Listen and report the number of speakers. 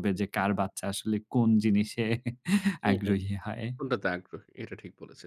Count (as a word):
two